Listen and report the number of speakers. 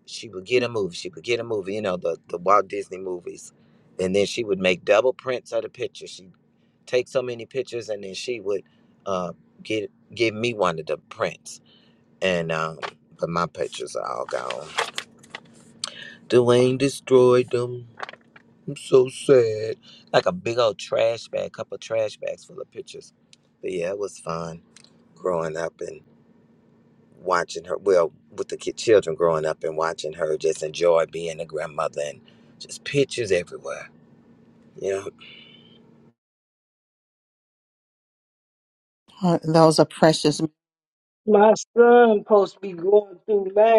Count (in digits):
3